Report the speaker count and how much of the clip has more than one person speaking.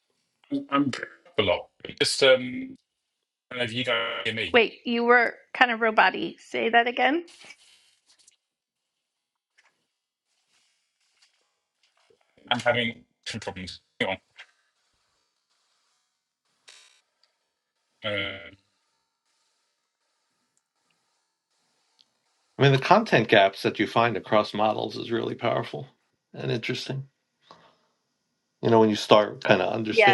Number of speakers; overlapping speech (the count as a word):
three, about 1%